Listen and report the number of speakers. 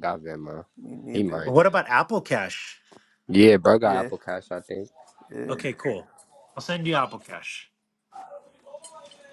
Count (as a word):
three